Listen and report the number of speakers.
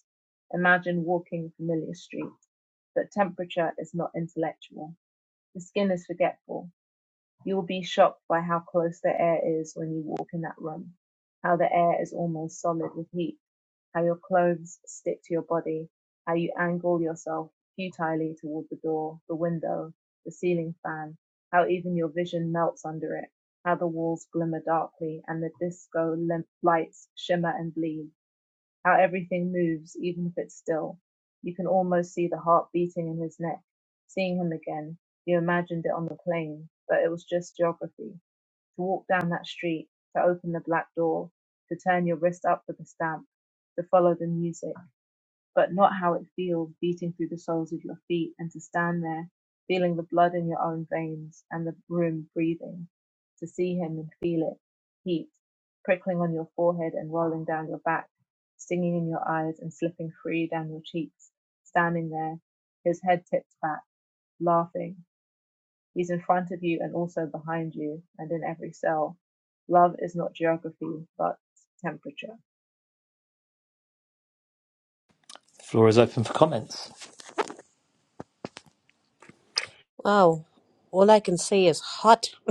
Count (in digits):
3